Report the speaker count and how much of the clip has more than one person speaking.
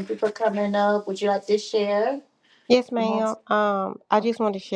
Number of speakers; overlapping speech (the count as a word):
two, no overlap